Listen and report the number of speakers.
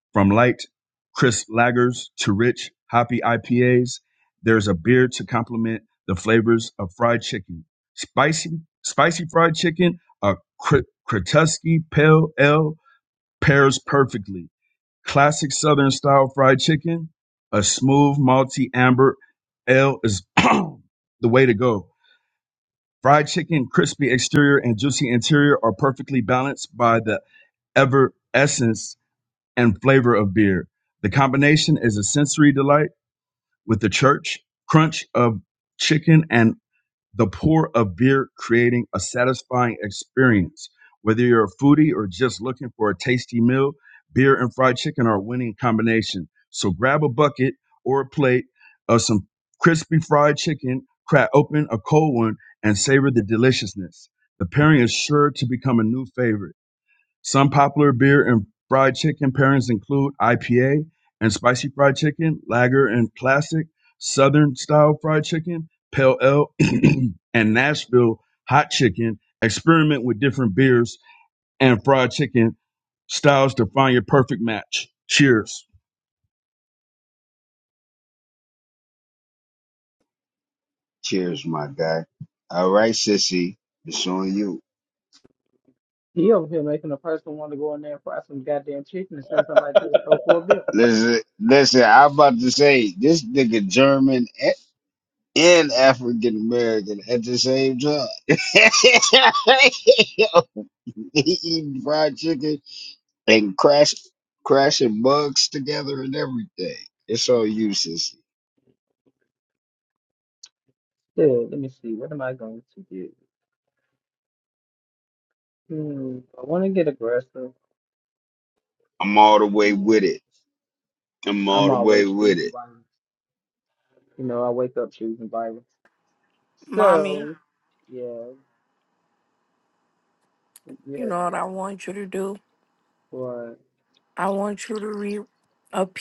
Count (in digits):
4